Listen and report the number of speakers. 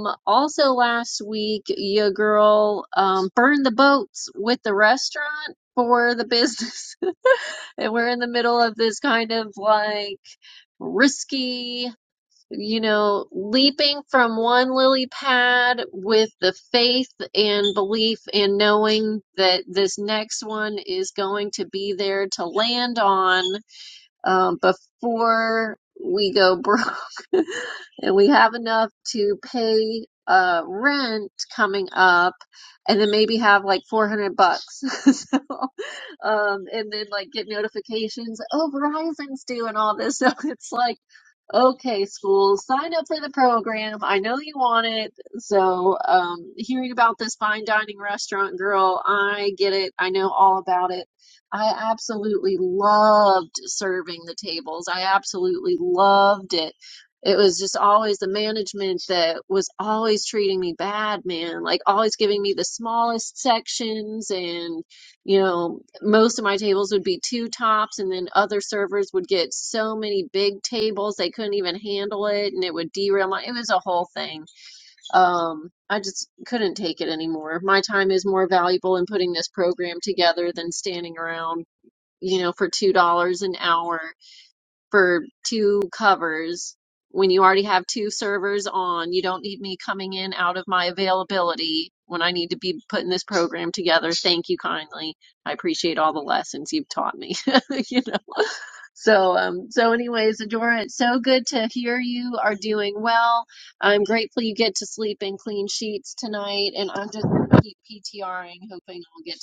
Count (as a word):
one